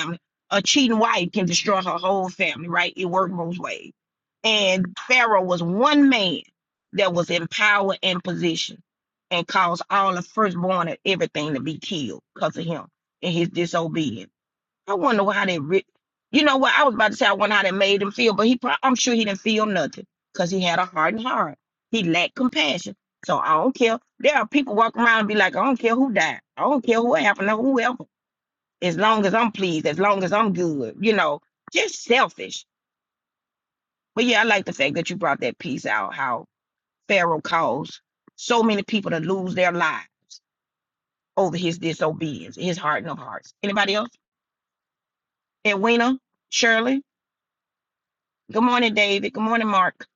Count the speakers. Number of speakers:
one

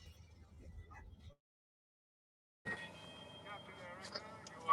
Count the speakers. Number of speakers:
zero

